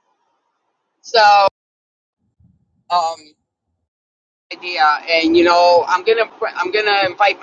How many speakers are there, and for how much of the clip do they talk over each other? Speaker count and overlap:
one, no overlap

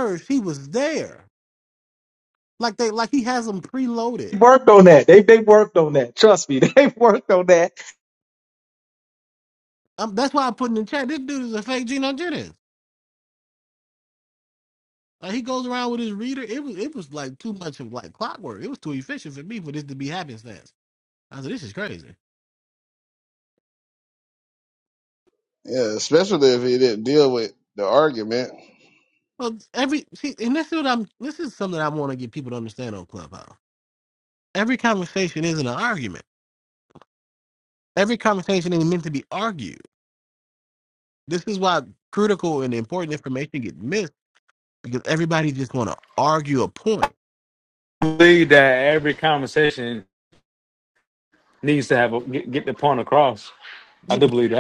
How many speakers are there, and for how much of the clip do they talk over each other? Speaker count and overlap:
four, under 1%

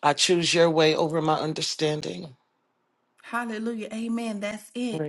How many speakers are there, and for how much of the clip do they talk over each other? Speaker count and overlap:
two, about 2%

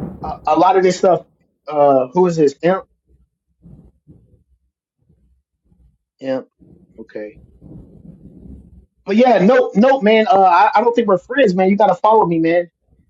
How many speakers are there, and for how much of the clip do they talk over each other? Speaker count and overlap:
one, no overlap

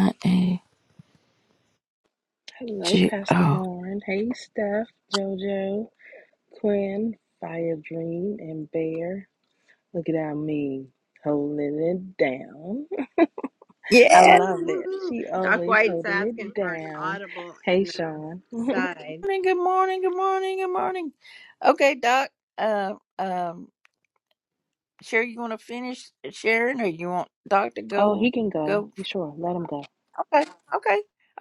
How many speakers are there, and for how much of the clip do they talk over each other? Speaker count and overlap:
three, about 16%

